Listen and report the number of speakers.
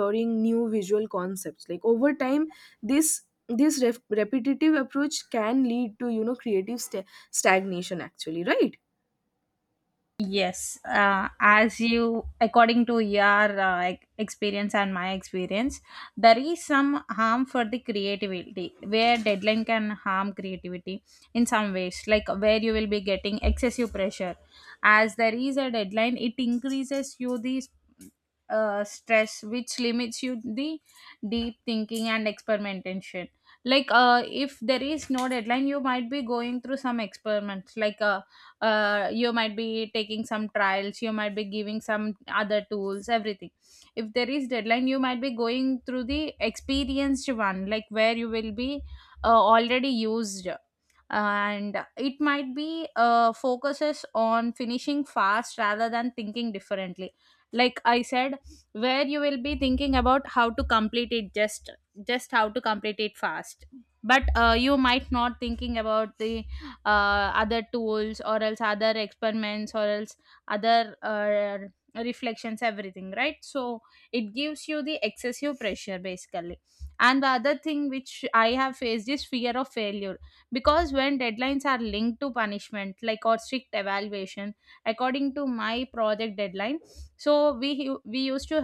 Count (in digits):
2